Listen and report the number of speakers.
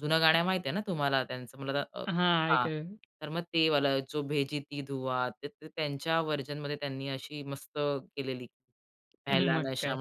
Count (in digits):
2